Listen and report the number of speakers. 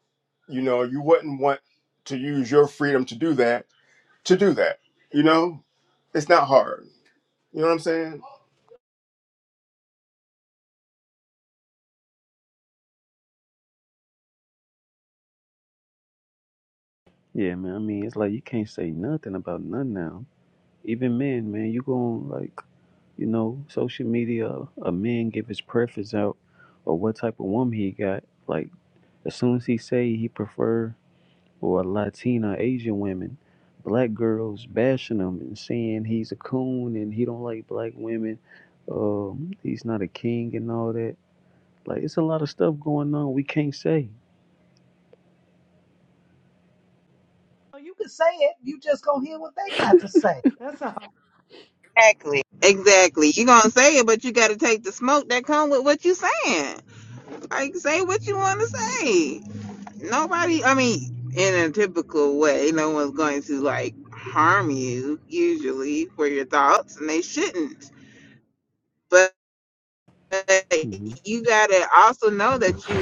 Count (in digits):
4